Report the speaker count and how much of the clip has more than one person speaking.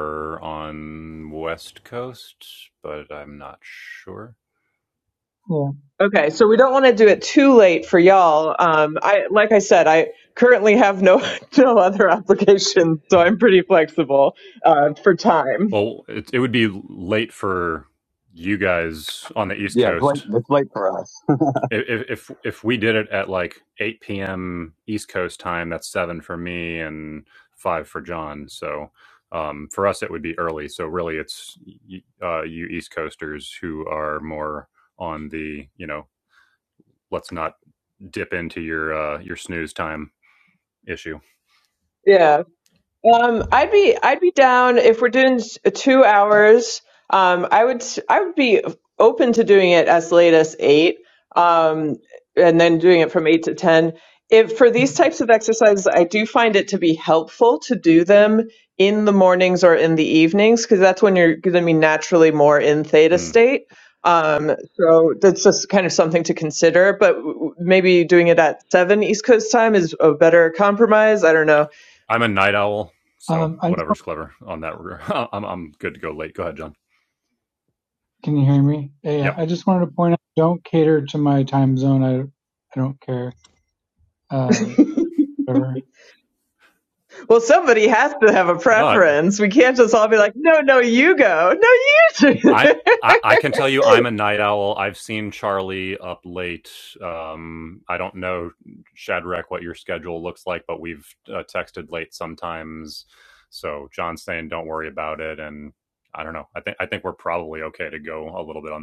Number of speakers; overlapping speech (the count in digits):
4, about 2%